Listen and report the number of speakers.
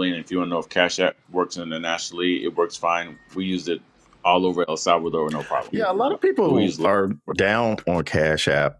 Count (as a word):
two